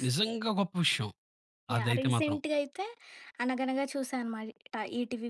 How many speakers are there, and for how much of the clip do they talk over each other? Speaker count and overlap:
2, about 14%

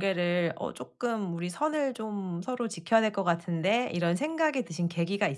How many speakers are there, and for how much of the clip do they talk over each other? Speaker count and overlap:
1, no overlap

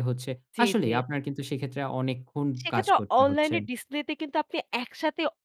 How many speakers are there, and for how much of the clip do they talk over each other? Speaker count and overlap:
2, about 26%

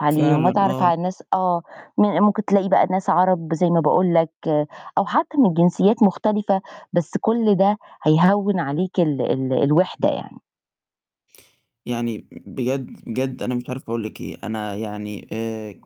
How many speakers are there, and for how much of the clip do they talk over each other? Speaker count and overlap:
2, about 5%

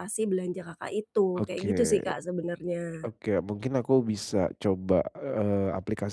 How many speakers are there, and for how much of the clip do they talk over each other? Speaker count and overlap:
2, about 12%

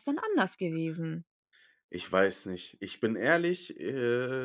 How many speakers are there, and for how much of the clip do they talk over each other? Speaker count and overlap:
2, no overlap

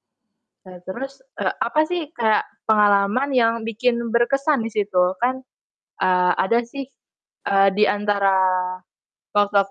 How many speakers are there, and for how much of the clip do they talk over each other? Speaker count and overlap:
1, no overlap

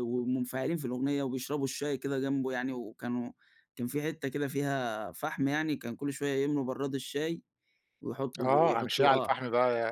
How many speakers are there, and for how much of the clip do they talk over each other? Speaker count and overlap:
2, about 10%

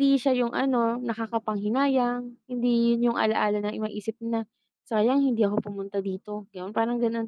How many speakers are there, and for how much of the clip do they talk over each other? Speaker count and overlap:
1, no overlap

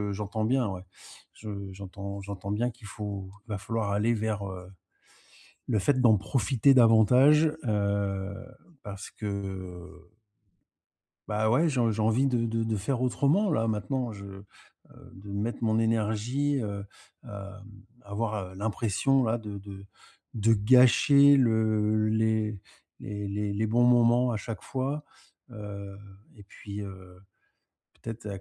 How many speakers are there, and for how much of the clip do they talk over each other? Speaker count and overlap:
1, no overlap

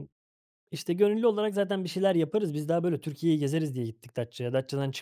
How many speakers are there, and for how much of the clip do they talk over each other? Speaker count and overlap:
1, no overlap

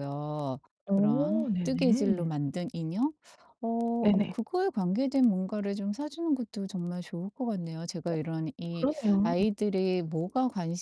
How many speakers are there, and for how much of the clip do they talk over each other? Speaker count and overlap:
2, about 18%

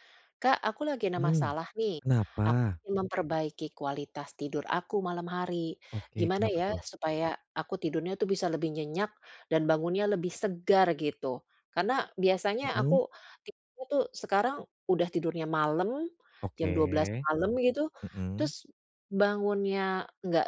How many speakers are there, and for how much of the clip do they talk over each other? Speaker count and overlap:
2, about 10%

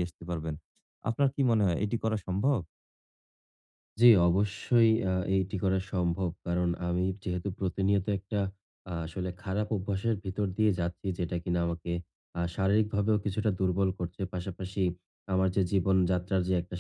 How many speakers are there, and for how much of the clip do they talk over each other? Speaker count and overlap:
2, no overlap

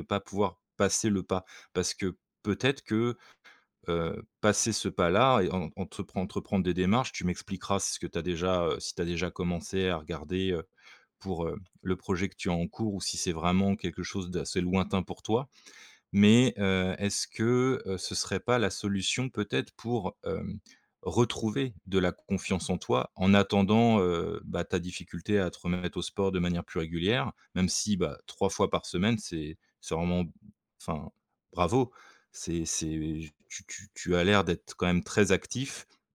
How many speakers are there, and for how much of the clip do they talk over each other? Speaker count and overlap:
1, no overlap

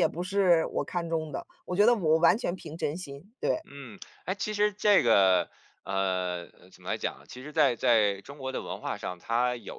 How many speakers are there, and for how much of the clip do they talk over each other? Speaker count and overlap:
2, no overlap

